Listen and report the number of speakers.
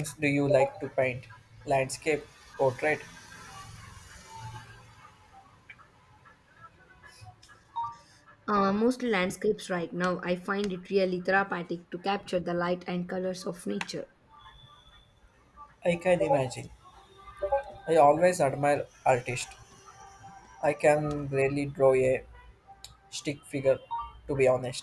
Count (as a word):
two